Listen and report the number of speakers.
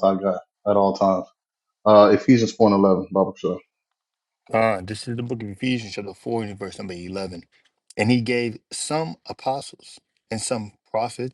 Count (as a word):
two